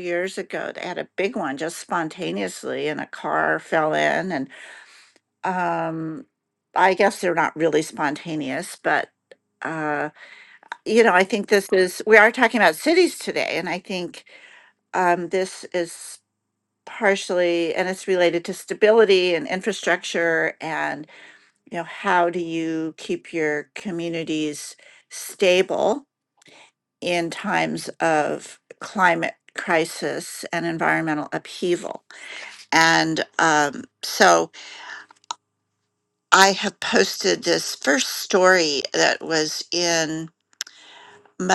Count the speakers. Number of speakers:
one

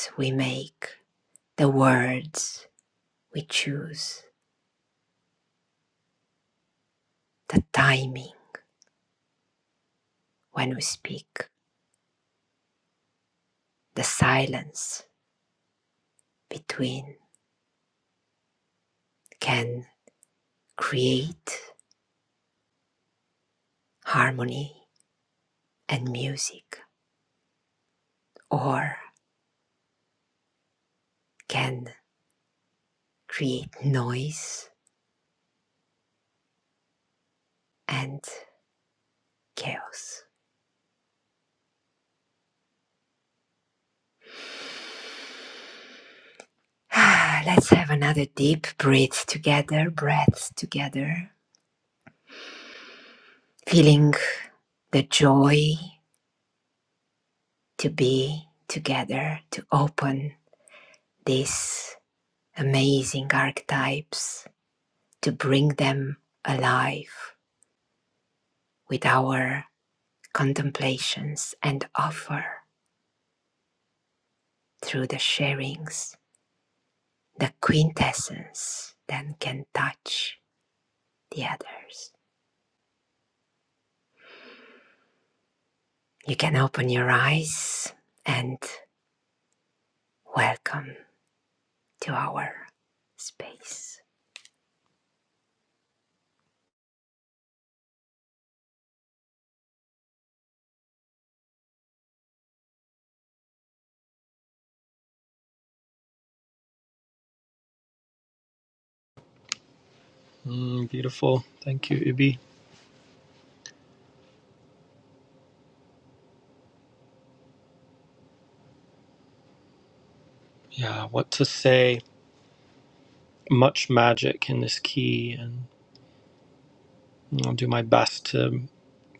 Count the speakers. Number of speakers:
two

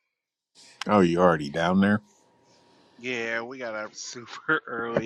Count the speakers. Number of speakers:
two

